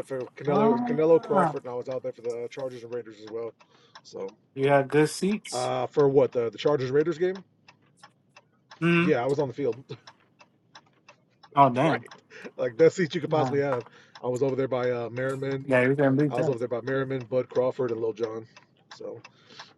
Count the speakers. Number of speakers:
two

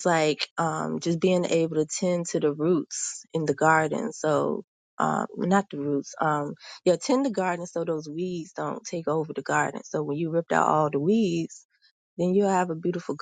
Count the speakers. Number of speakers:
one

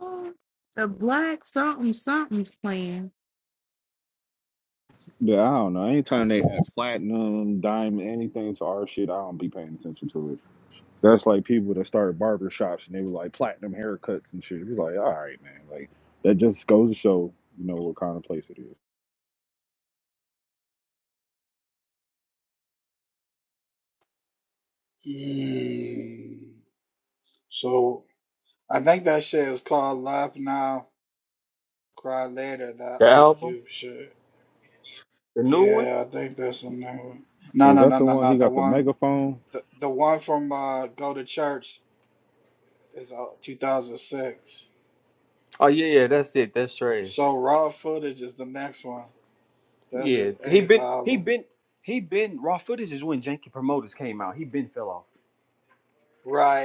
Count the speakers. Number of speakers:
four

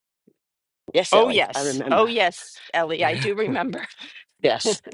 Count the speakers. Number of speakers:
two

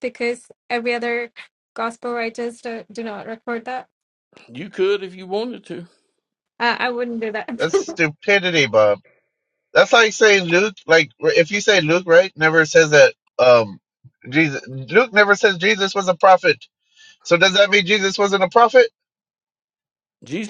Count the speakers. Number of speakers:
three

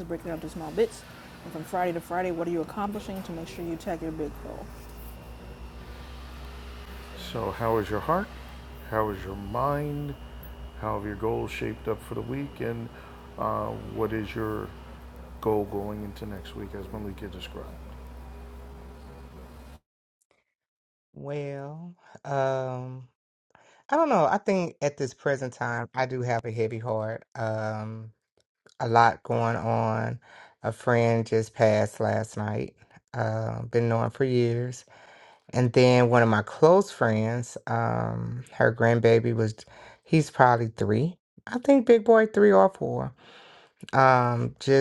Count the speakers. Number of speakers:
three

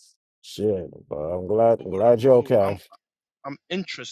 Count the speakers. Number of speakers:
two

